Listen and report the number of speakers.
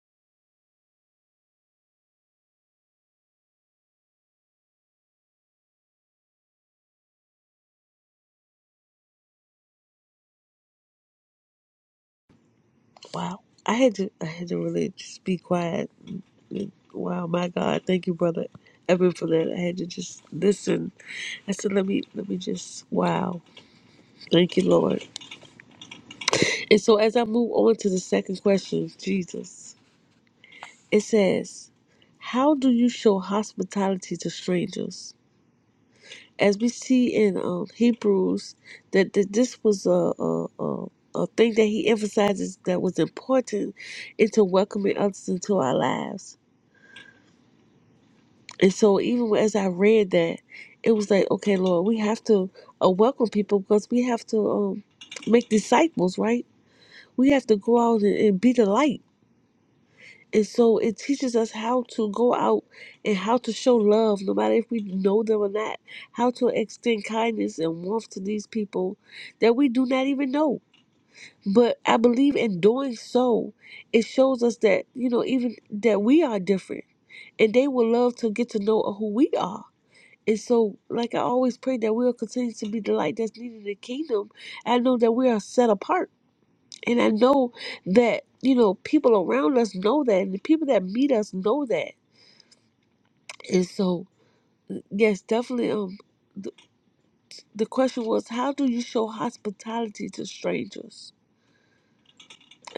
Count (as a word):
one